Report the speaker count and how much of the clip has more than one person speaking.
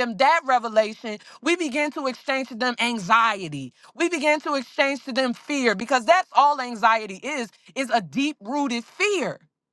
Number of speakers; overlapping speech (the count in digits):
1, no overlap